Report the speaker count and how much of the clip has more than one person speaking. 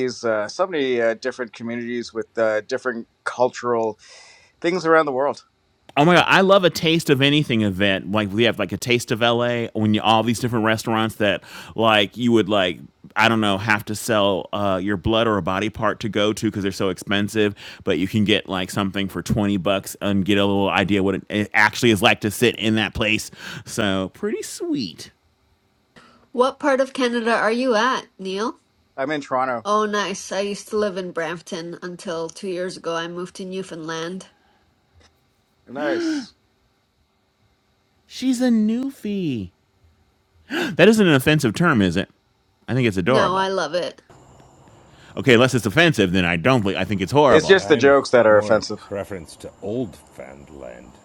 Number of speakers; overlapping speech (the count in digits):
4, about 4%